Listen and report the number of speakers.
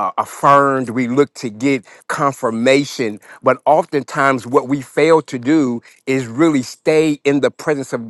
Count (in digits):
1